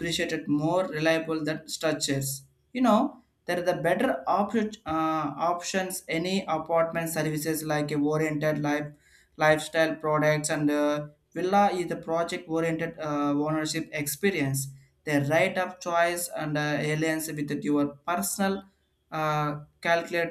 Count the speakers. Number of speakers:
1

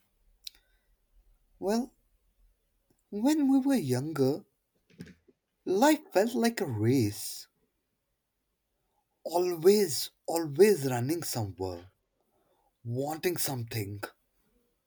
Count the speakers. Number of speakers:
1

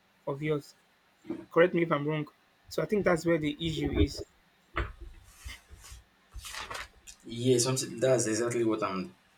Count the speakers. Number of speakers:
2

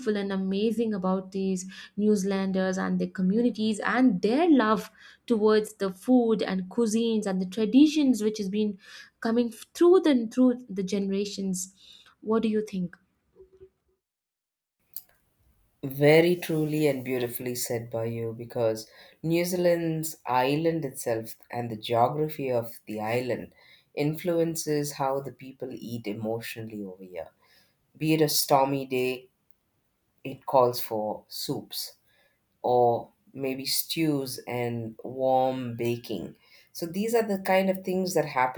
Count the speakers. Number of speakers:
2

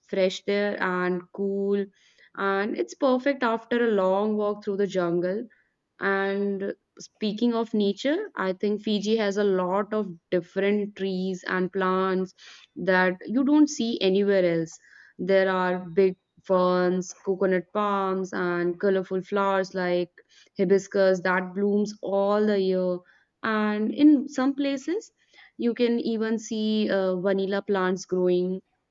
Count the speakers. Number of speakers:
1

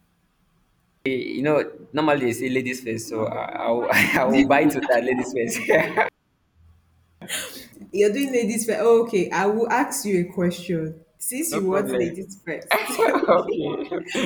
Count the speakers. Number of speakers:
2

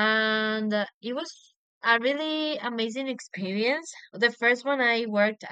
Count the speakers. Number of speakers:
1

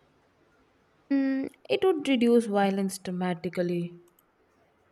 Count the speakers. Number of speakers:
1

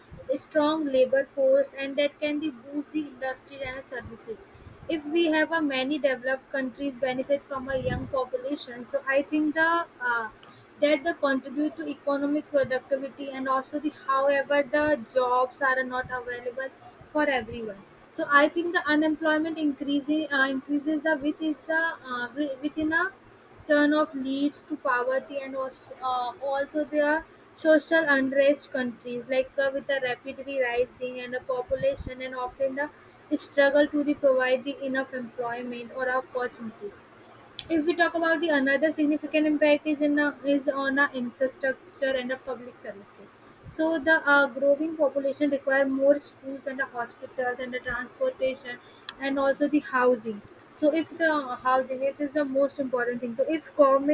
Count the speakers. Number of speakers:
1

